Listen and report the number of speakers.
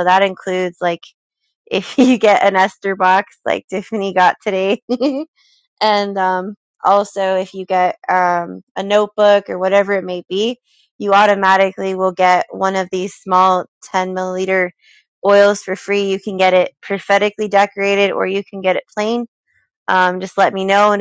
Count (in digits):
1